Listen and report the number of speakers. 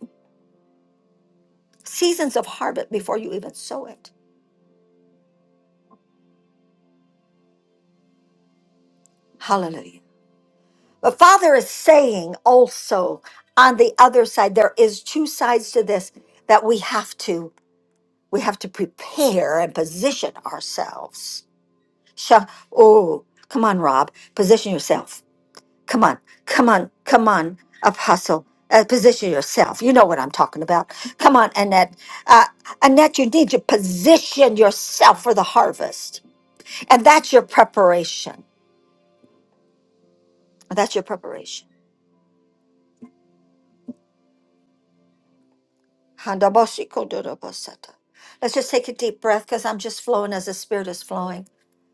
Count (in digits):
1